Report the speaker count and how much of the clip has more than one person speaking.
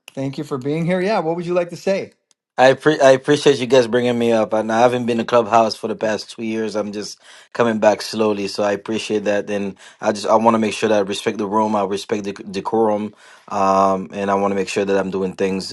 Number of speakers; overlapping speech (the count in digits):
2, no overlap